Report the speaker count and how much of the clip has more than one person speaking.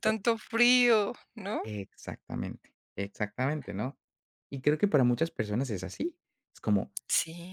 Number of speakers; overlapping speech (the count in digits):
2, about 2%